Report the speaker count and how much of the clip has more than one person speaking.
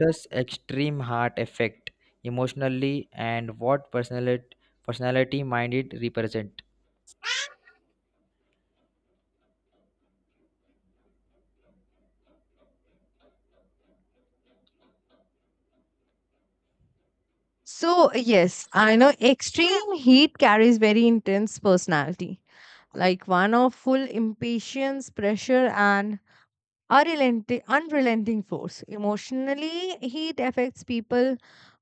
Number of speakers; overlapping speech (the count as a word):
two, no overlap